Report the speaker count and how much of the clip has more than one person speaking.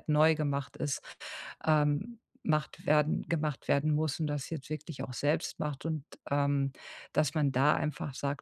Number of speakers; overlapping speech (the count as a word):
one, no overlap